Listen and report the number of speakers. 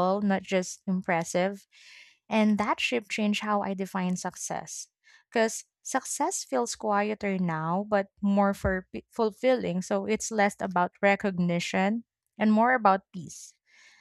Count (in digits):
1